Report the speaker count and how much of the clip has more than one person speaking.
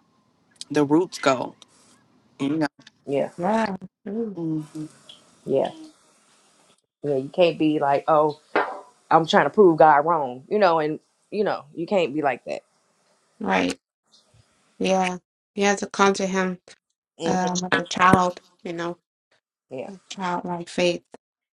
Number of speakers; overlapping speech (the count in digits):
3, about 1%